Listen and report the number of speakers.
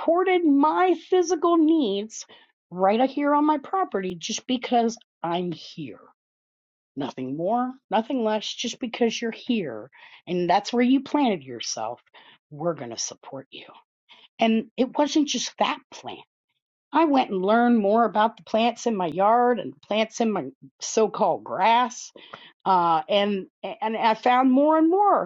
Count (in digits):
1